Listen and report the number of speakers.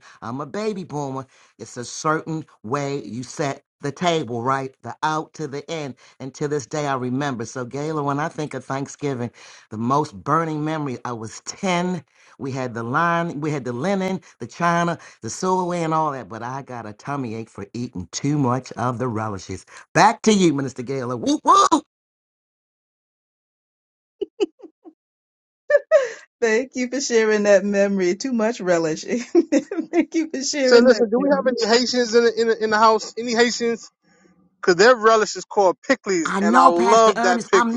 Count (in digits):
3